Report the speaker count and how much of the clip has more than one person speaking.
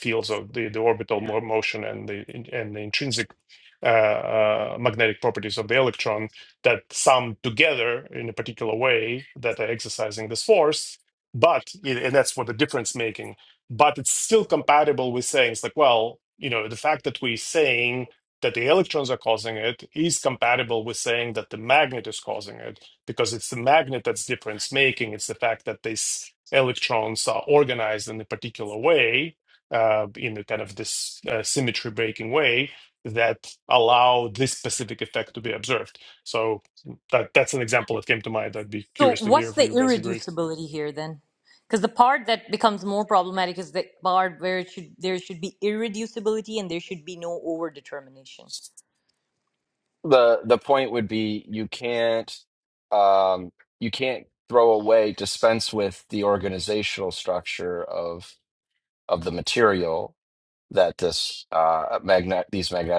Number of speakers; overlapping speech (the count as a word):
three, about 2%